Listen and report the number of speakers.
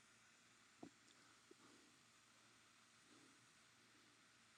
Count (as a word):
zero